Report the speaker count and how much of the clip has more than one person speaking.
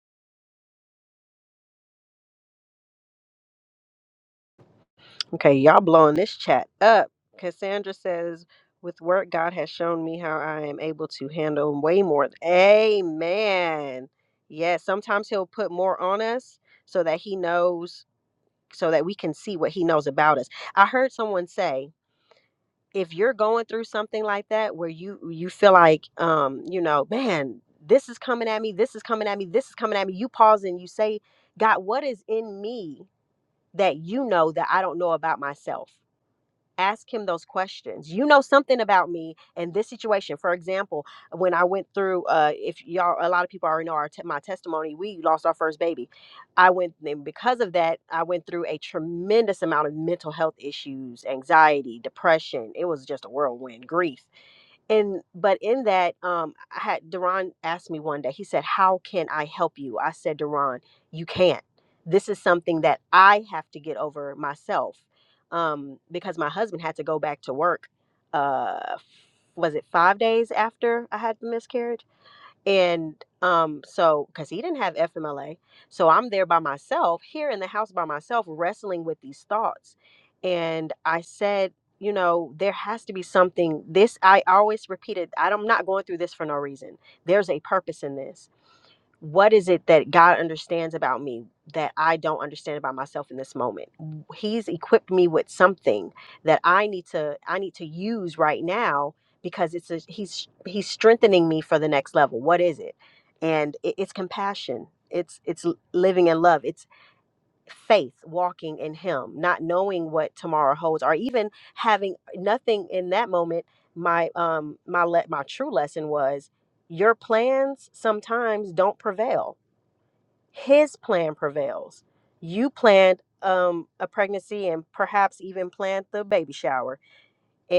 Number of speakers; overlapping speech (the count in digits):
1, no overlap